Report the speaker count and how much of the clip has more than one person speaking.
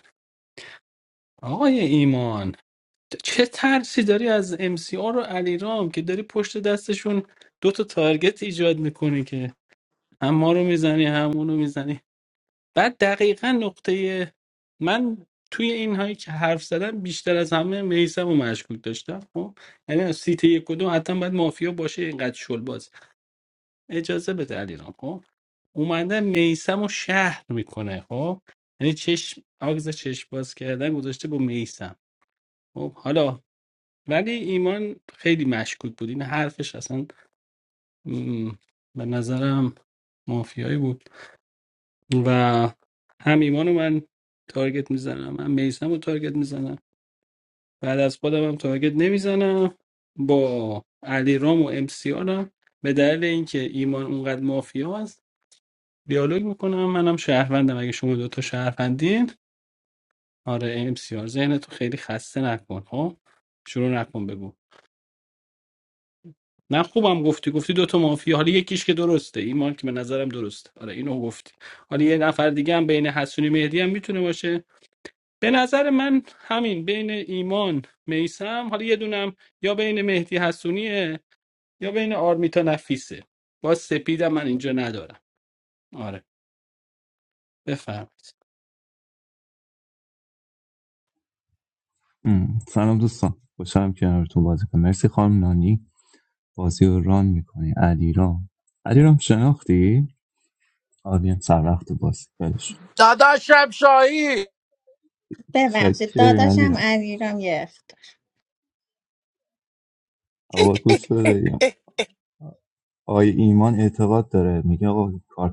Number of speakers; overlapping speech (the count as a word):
four, about 1%